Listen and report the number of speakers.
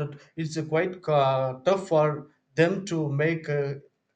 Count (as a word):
one